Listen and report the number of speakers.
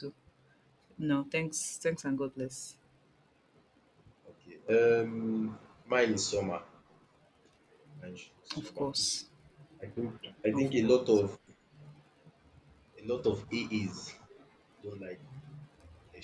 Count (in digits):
2